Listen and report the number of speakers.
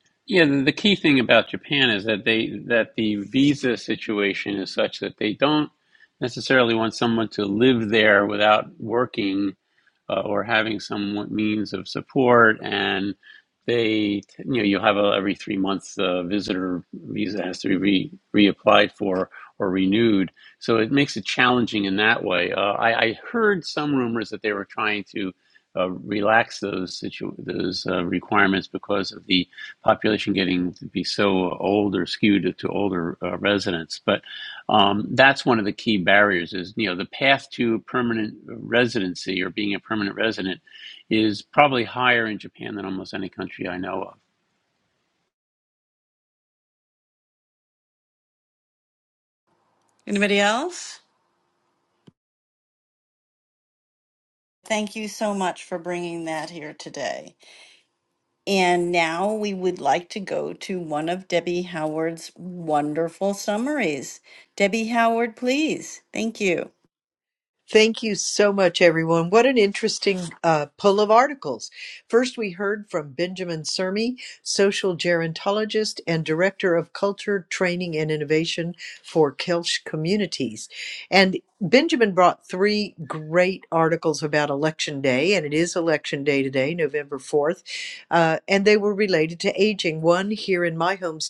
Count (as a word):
three